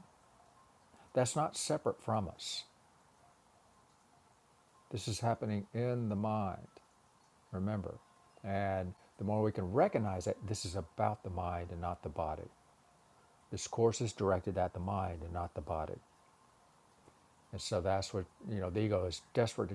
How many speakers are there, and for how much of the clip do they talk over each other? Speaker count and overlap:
1, no overlap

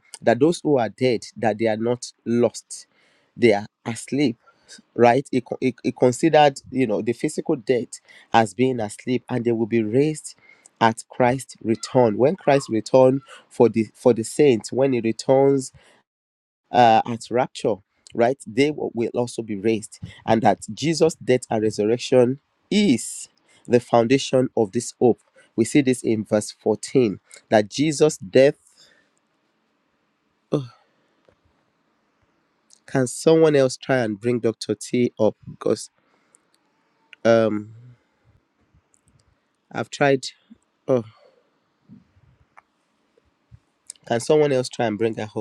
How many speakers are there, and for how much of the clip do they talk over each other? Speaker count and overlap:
1, no overlap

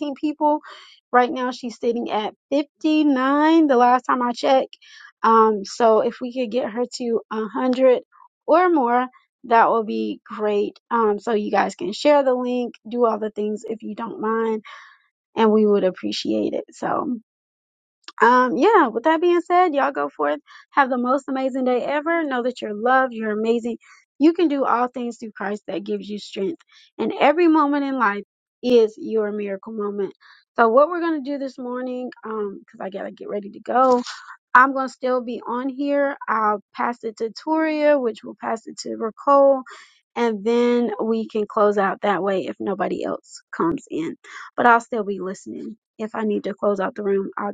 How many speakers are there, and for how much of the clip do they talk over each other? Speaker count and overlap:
1, no overlap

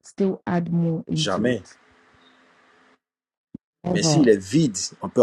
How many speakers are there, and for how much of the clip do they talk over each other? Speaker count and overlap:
2, about 15%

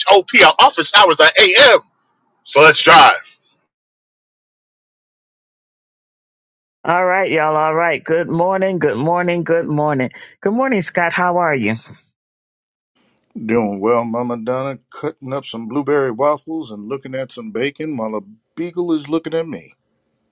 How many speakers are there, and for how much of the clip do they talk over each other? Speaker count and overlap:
3, no overlap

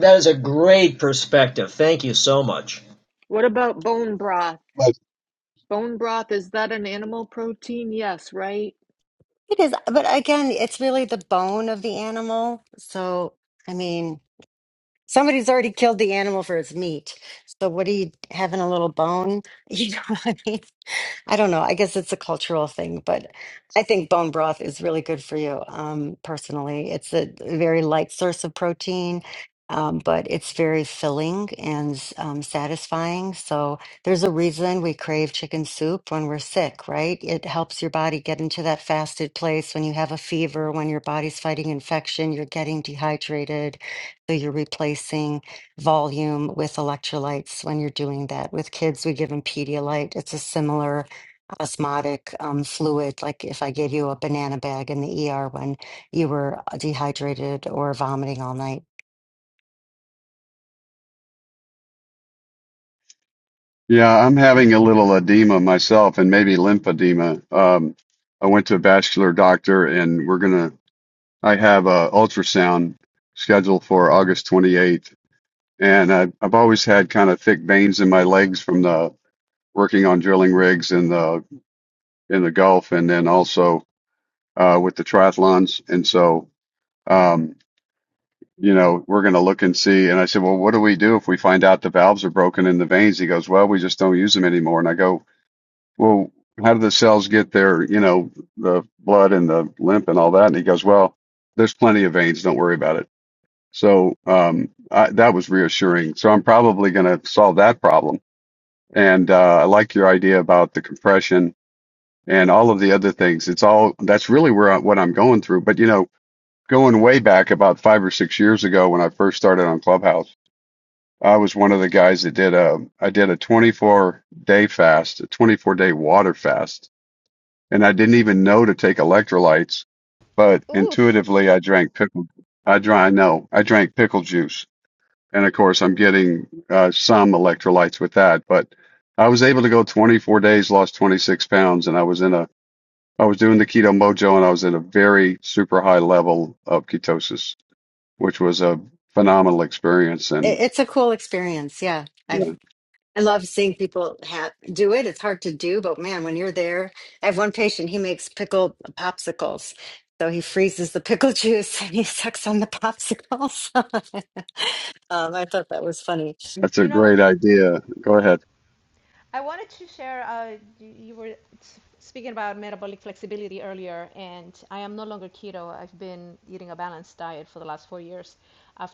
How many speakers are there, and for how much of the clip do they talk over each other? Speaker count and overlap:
5, about 1%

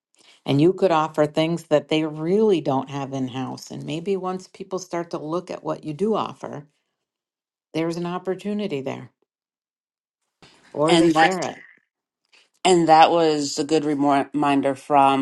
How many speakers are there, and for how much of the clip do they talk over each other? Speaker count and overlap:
2, about 3%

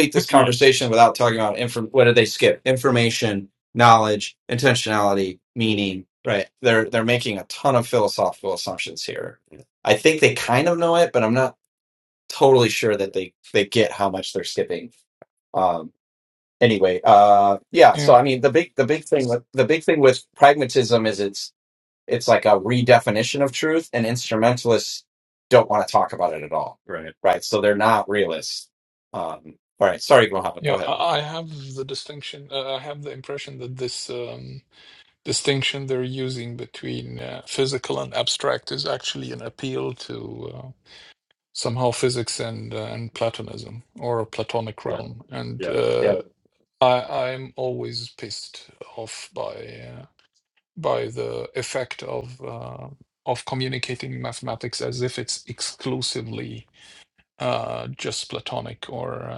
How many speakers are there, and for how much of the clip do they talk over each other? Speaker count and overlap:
2, about 2%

